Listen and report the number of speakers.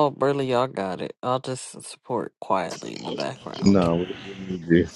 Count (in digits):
2